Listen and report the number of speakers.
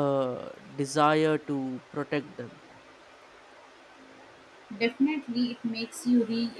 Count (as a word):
two